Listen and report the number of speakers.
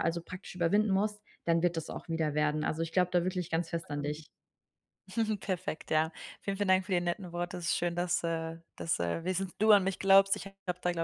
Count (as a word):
two